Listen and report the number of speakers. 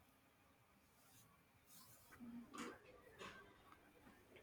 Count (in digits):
0